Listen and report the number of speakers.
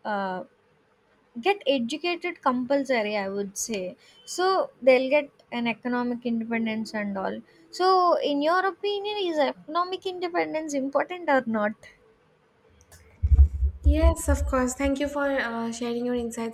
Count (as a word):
two